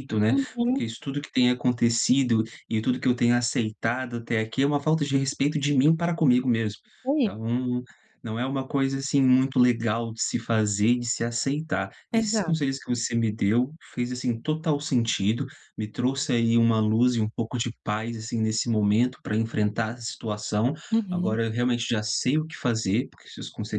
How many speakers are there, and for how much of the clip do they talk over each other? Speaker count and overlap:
two, about 4%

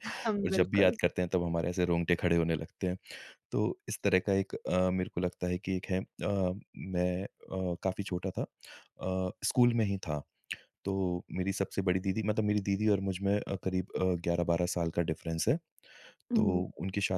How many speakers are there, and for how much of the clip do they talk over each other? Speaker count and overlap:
two, about 5%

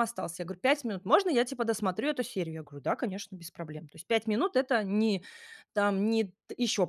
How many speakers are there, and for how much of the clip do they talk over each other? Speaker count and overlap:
one, no overlap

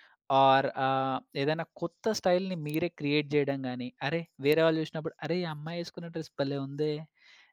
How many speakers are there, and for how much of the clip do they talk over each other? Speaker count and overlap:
one, no overlap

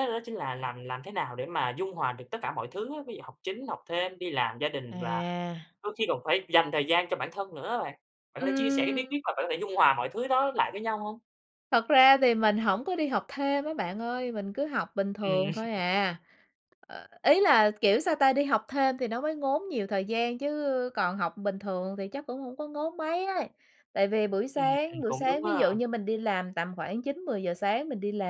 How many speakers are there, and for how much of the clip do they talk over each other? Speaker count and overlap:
two, about 9%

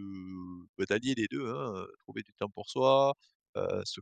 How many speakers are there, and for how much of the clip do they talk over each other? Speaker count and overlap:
one, no overlap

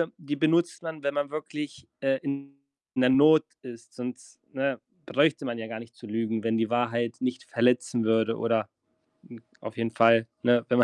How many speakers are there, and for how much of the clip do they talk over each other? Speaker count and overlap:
one, no overlap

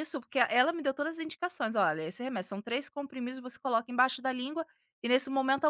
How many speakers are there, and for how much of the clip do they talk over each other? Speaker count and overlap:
one, no overlap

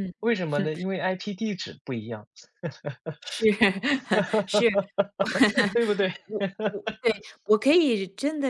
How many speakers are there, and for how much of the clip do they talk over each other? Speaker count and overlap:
two, no overlap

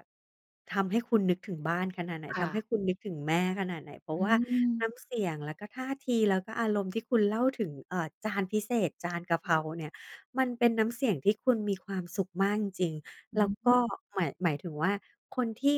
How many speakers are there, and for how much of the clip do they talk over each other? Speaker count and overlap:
two, about 6%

